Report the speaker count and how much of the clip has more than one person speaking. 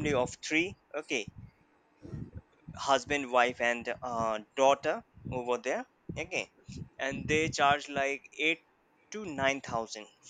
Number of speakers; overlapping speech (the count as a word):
one, no overlap